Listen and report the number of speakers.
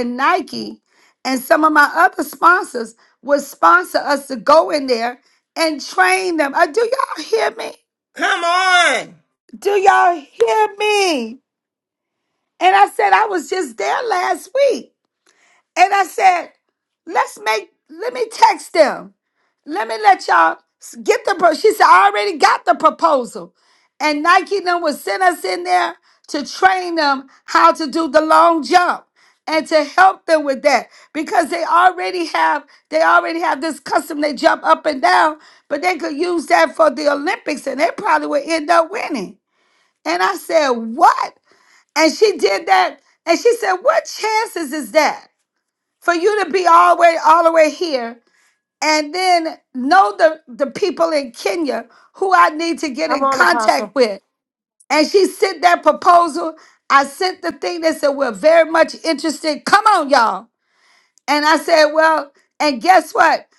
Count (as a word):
two